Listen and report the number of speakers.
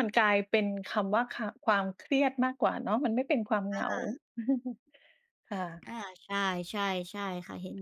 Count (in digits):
2